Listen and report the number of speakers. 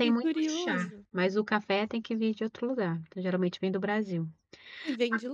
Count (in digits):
2